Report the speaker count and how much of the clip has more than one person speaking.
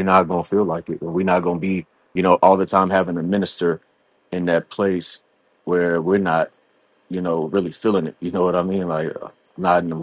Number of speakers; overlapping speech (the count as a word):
one, no overlap